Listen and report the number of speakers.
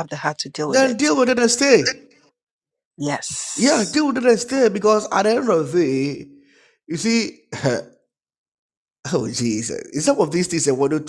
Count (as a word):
two